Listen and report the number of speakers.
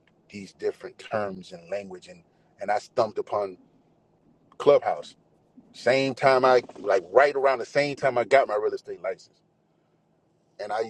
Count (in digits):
1